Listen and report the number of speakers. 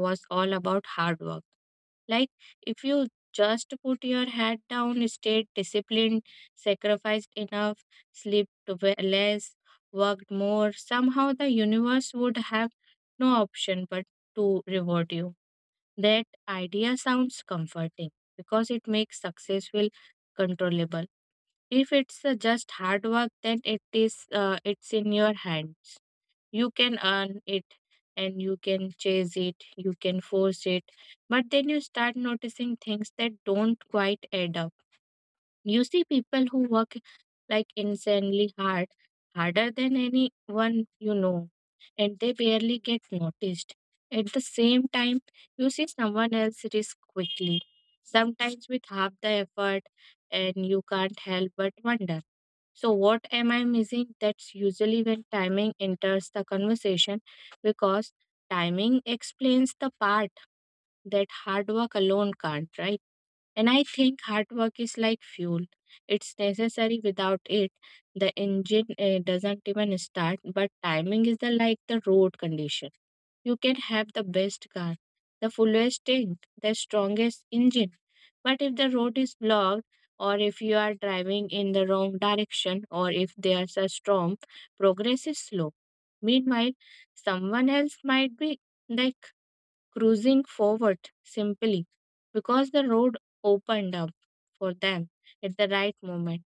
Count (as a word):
one